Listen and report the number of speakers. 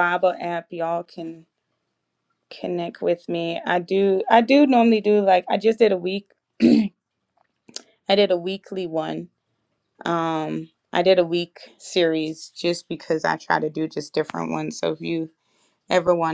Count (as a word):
one